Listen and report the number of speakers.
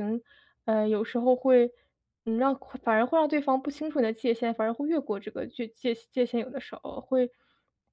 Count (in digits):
1